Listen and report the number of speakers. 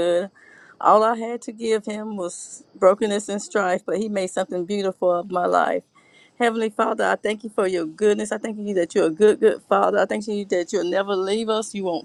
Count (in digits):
1